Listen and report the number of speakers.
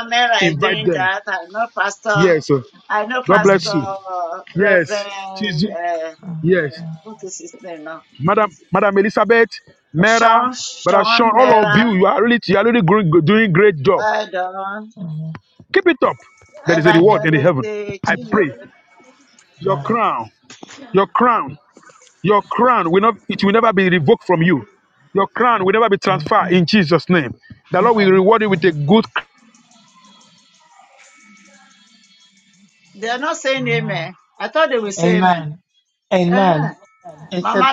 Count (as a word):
three